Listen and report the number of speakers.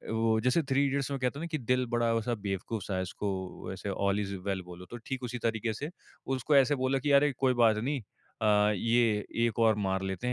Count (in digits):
1